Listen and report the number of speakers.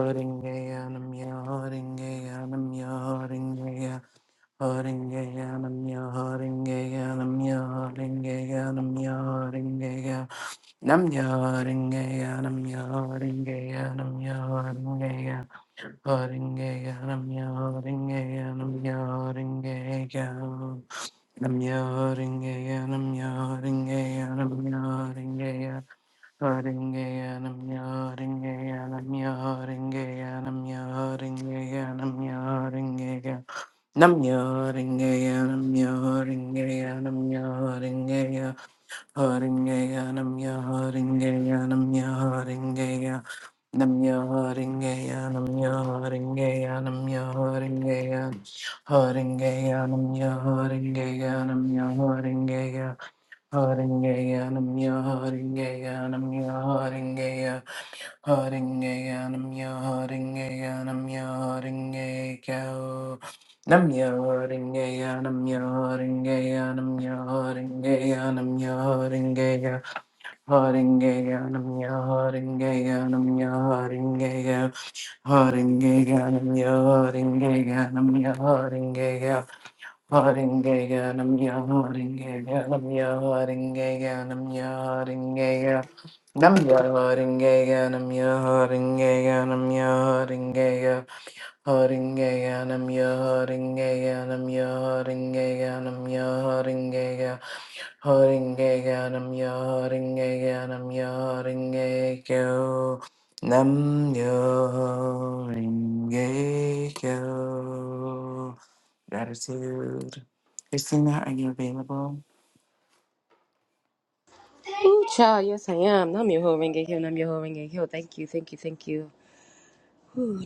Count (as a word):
two